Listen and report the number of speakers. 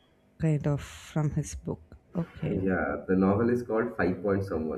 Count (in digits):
2